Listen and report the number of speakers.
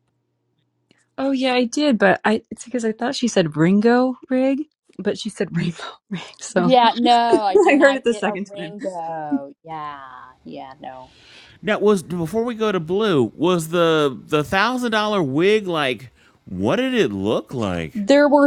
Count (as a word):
three